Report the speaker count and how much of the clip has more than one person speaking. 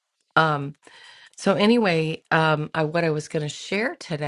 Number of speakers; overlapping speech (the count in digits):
1, no overlap